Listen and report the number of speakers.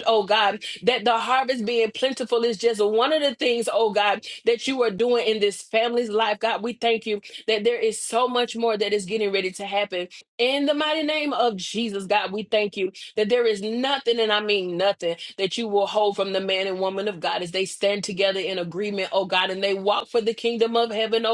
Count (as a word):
one